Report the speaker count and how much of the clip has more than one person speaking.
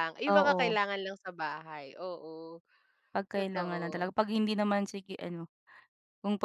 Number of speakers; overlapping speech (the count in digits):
2, about 18%